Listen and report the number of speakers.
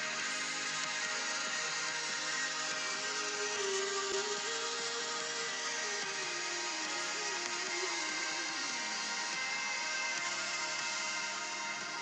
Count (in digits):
0